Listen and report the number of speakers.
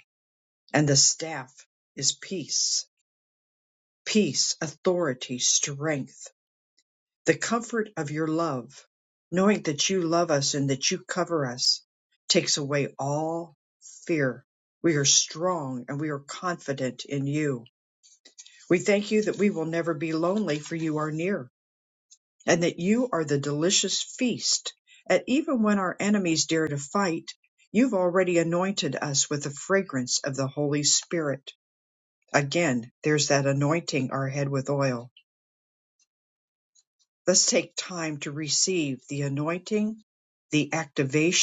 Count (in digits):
1